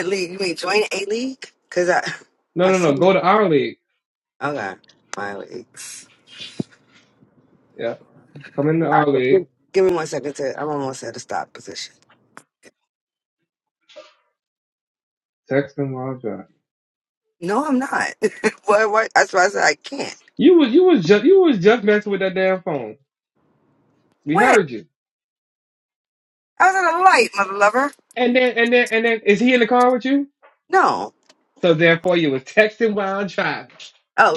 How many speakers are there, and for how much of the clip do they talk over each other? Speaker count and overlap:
2, about 3%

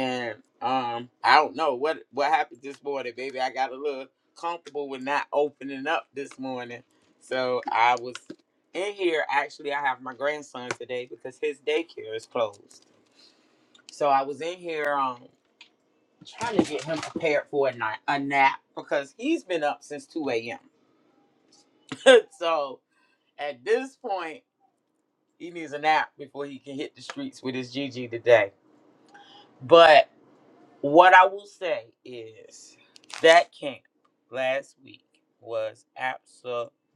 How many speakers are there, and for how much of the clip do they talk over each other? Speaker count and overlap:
1, no overlap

